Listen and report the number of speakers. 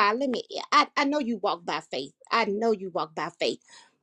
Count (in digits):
1